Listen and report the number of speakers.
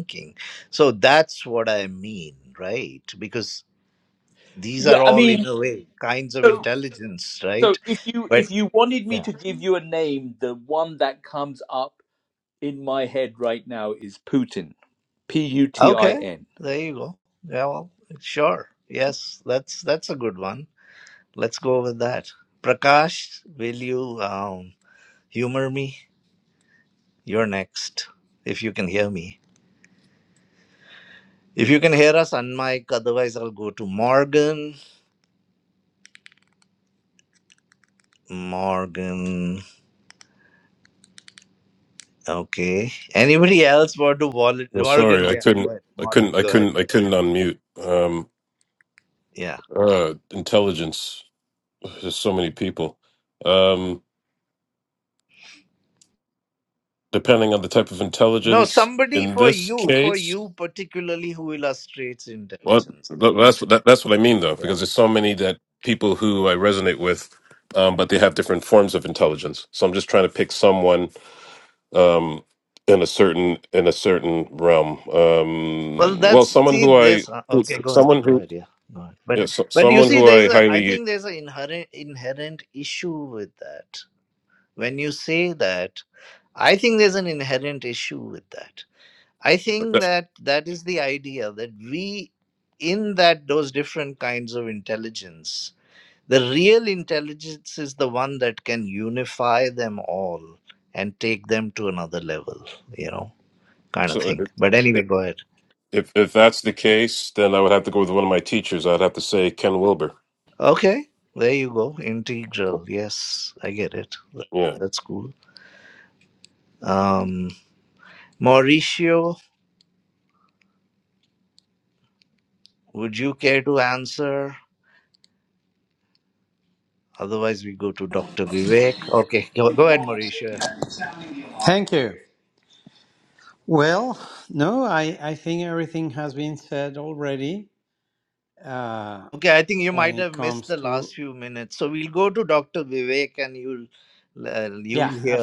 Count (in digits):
4